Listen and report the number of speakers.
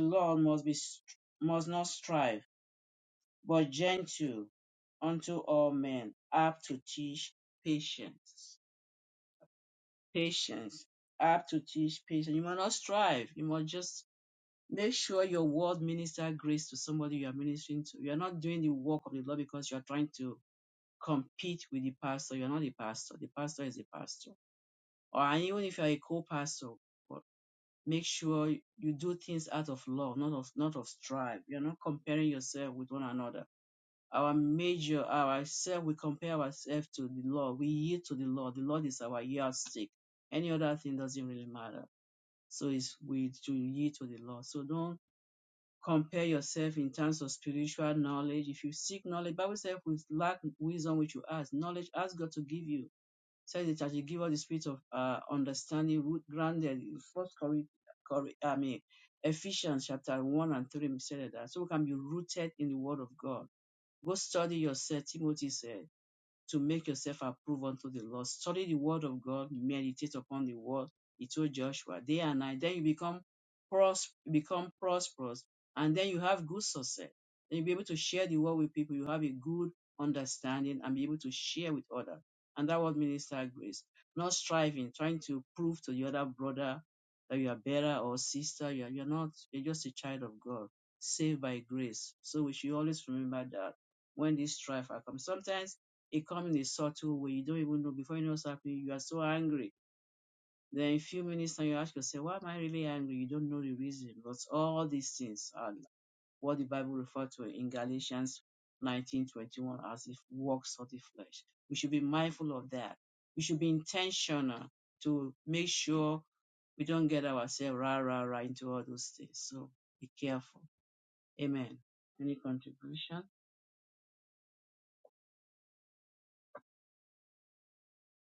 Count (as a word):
one